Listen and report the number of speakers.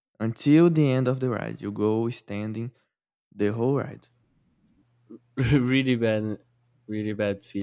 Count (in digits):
2